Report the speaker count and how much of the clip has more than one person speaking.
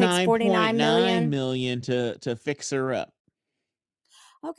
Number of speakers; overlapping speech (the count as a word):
two, about 19%